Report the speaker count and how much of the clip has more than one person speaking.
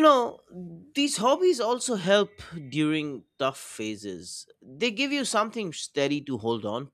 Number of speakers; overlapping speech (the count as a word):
one, no overlap